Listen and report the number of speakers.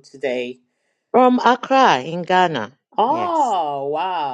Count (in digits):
2